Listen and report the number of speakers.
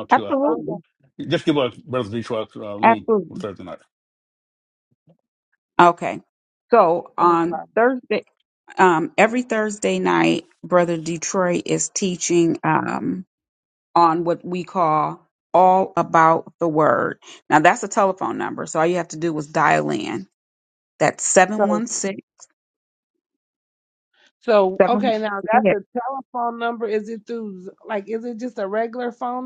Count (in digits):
3